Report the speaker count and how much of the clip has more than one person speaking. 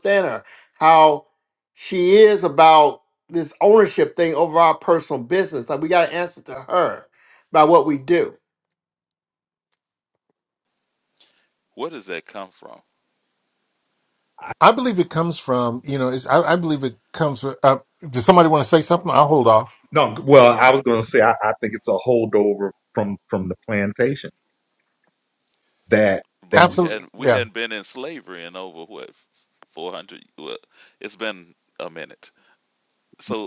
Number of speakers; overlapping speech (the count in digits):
4, about 3%